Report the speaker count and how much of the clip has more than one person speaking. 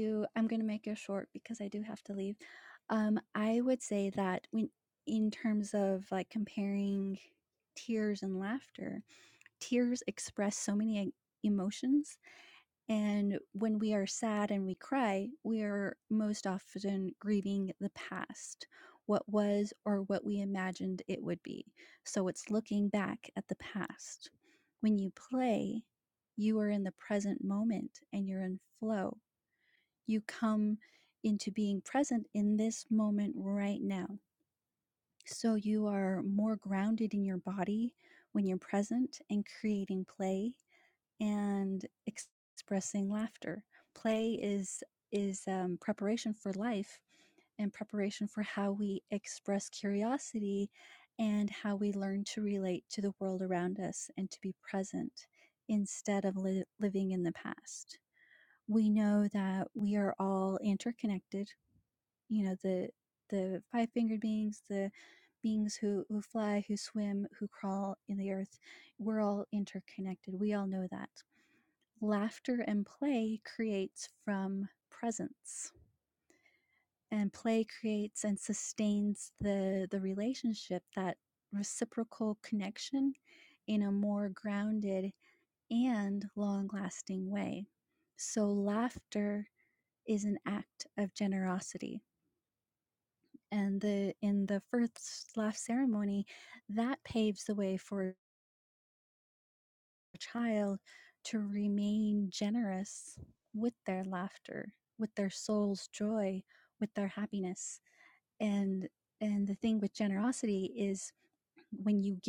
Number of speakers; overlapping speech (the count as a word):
one, no overlap